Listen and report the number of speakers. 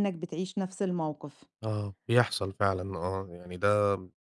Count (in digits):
2